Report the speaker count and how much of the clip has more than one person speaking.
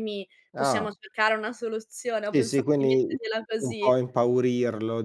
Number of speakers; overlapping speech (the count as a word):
two, about 29%